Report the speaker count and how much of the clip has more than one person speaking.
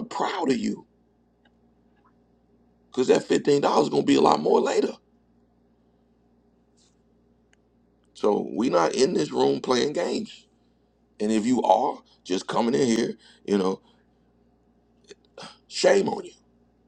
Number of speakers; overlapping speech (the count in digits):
1, no overlap